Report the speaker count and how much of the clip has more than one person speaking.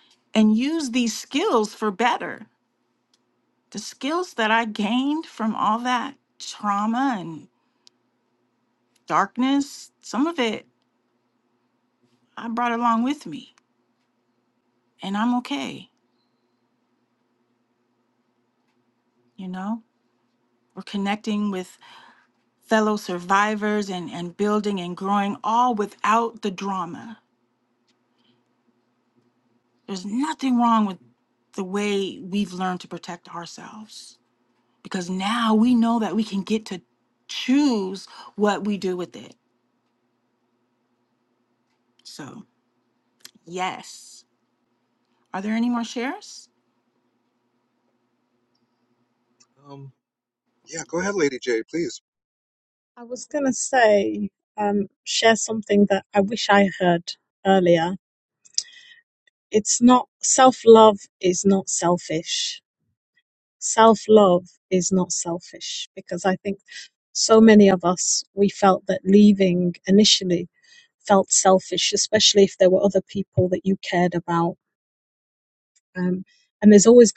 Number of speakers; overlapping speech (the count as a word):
three, no overlap